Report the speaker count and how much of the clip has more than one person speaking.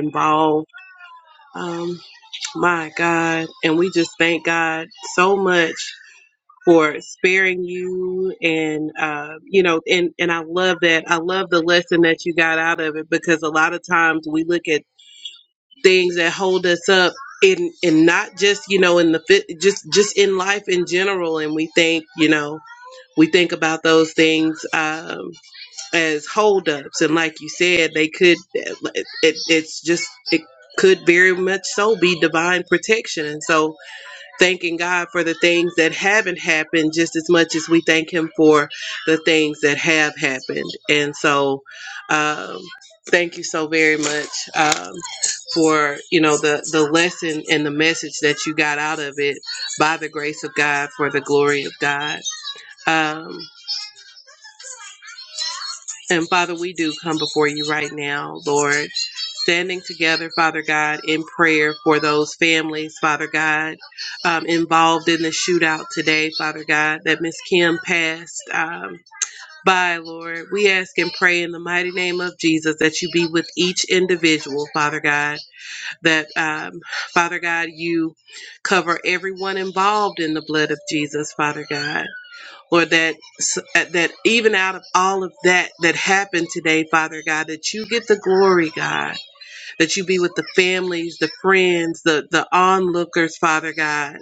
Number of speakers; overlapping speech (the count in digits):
1, no overlap